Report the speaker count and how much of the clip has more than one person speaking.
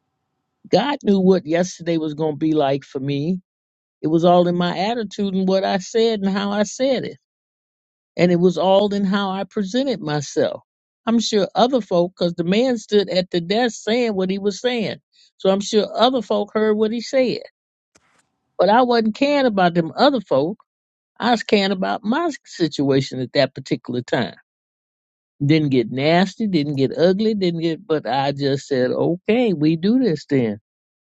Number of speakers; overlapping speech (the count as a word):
one, no overlap